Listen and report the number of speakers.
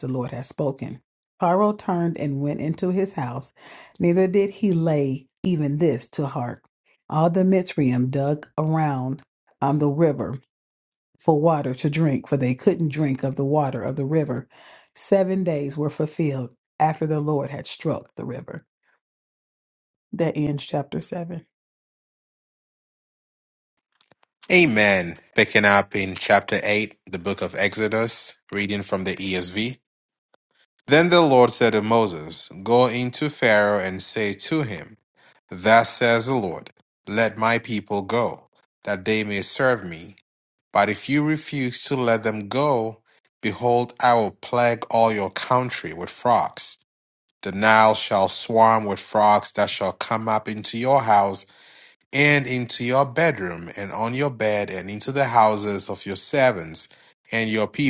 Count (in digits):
2